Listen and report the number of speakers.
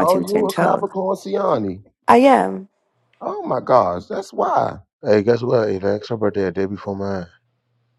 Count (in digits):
3